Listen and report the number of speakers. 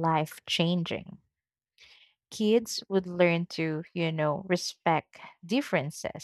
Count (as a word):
one